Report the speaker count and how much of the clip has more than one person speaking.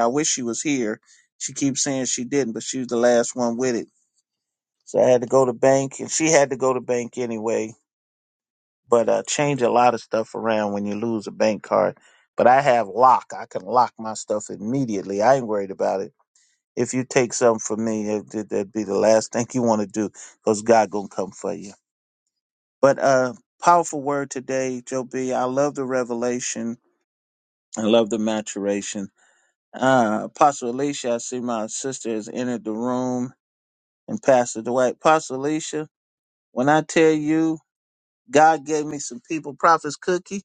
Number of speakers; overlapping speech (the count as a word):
one, no overlap